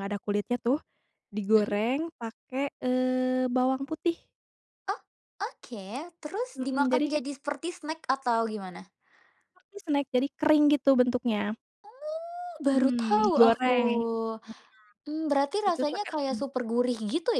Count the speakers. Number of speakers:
two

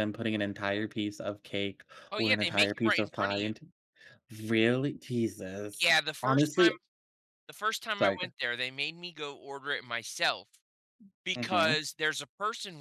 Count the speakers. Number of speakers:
two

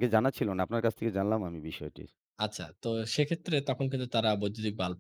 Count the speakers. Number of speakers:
two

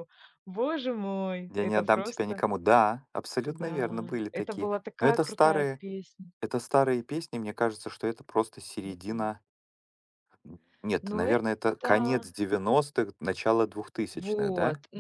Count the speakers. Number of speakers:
two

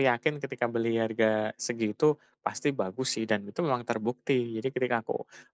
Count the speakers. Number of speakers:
one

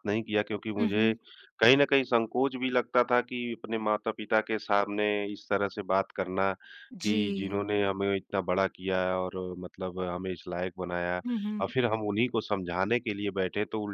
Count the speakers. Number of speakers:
two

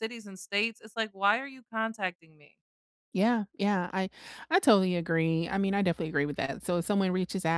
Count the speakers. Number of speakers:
two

